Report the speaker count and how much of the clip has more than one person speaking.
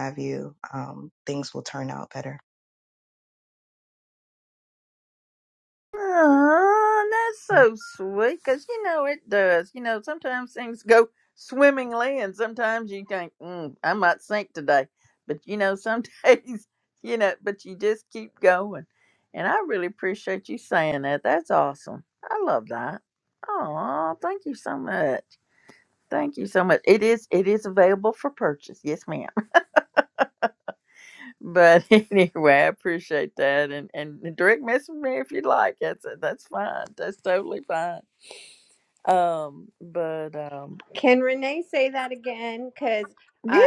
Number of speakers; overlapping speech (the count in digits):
3, under 1%